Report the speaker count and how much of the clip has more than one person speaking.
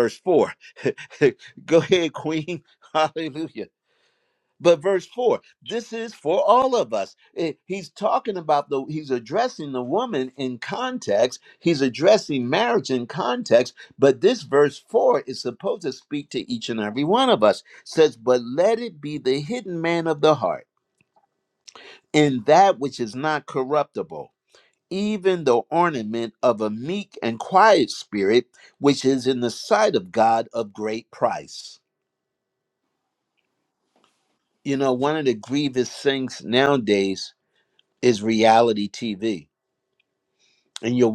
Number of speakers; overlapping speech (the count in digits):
1, no overlap